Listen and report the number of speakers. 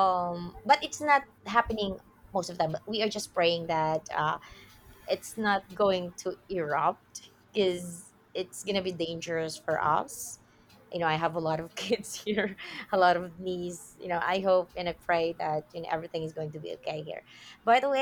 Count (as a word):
one